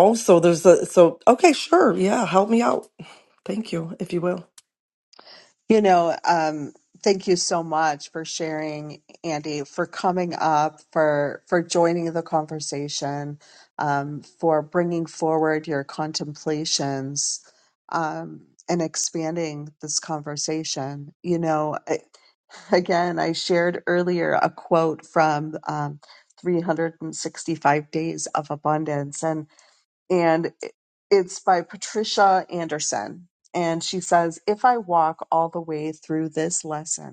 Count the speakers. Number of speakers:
2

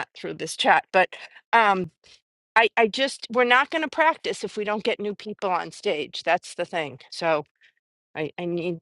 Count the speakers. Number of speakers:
1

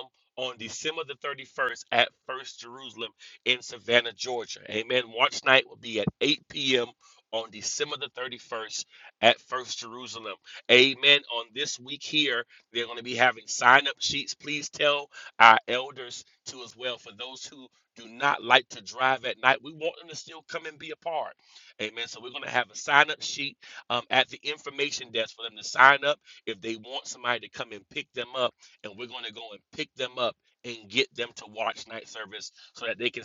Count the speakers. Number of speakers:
1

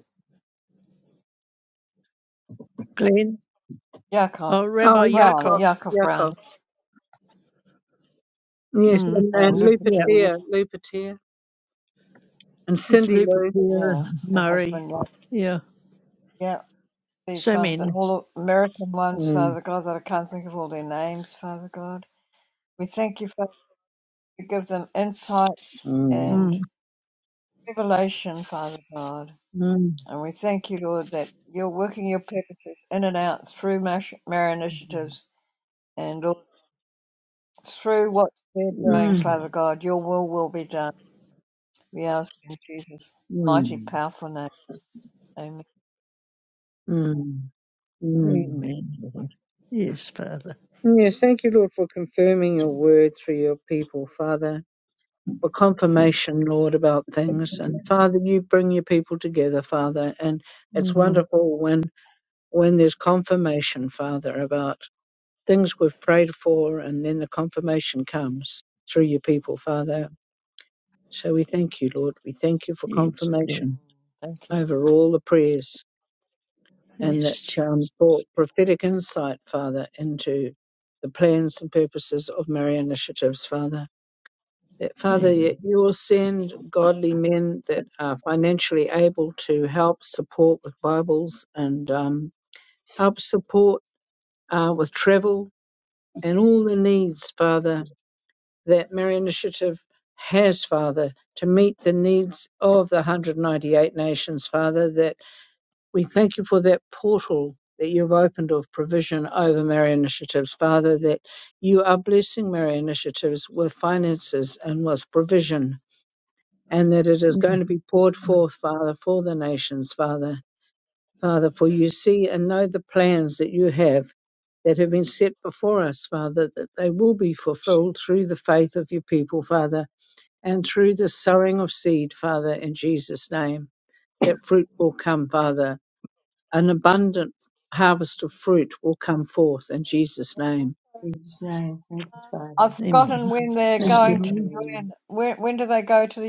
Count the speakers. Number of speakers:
4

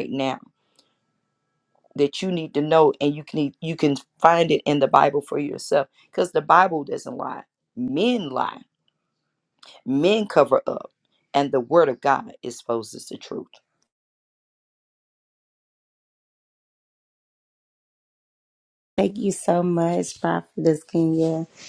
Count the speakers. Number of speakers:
2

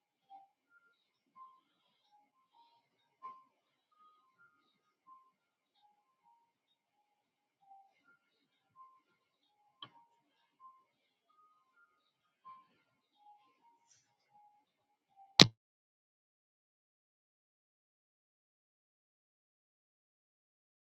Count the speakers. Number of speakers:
0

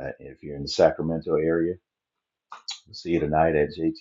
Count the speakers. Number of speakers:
1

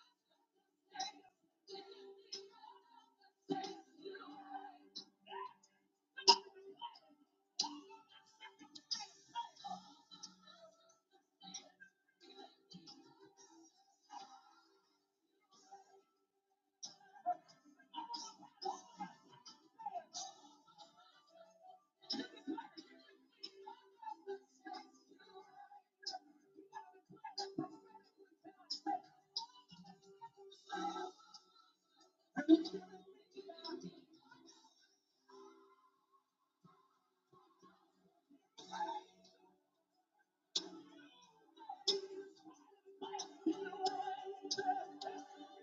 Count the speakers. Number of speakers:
0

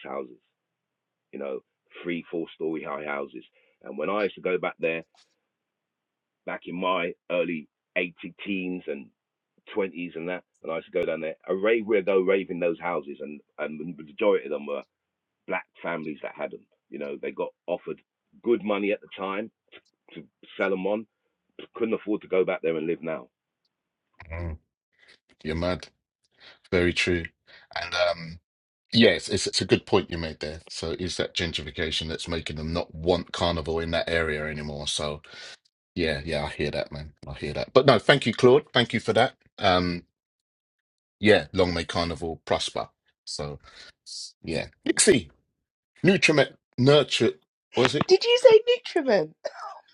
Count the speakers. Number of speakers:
3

